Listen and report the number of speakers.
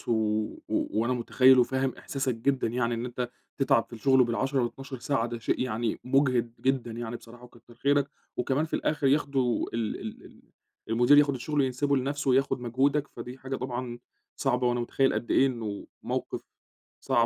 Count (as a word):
one